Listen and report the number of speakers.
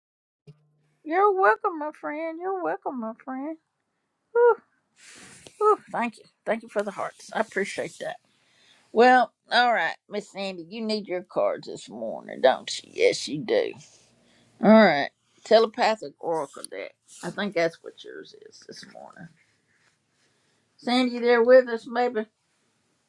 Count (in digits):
1